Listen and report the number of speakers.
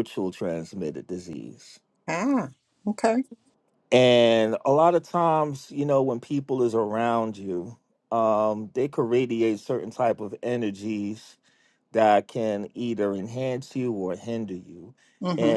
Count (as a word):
two